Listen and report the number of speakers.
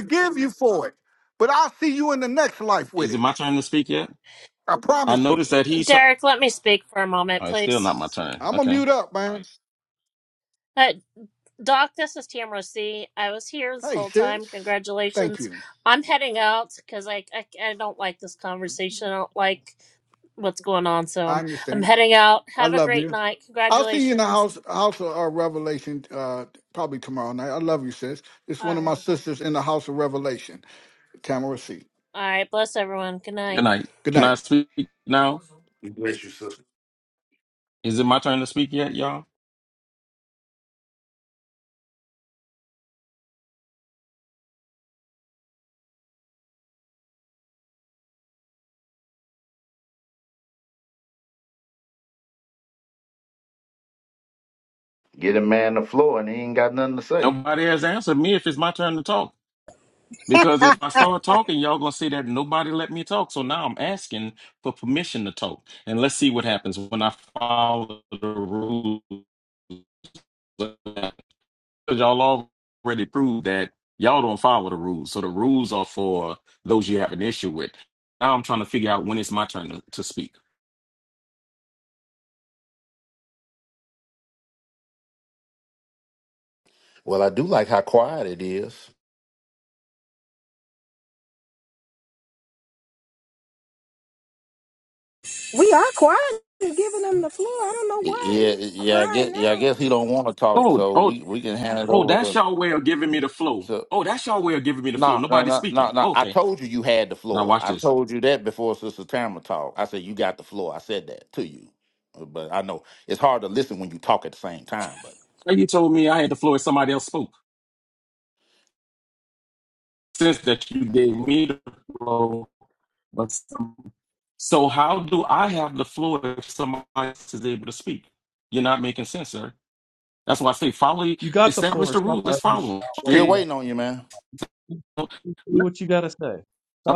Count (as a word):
six